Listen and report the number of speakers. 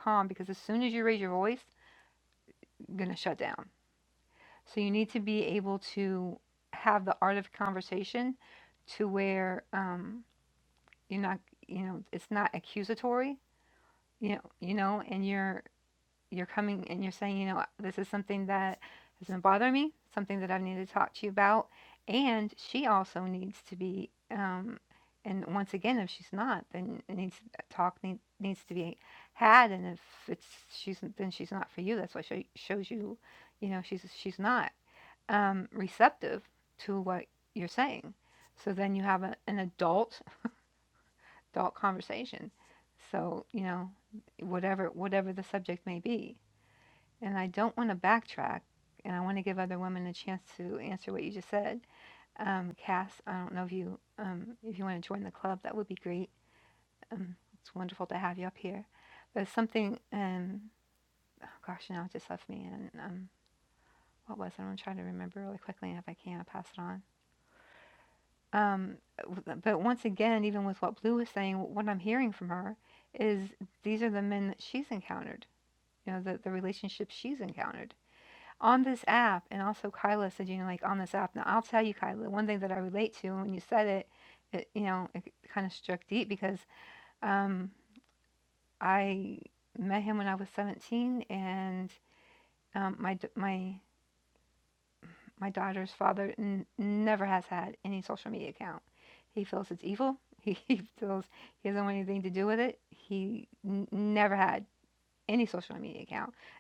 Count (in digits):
1